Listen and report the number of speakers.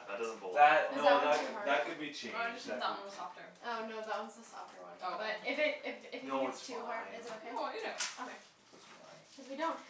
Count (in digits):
4